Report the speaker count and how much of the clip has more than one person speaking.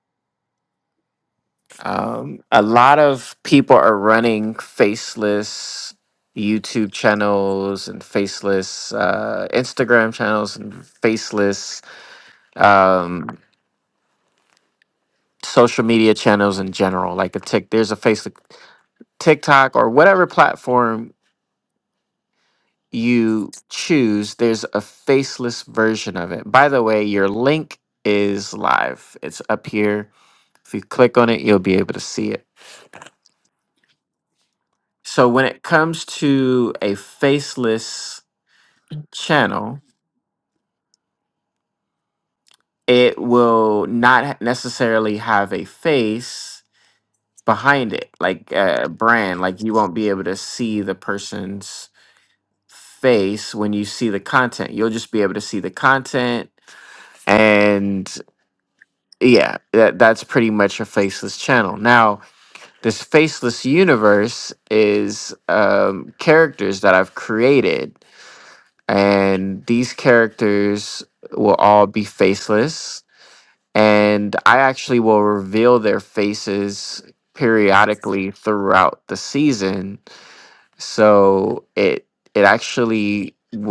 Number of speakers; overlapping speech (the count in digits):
1, no overlap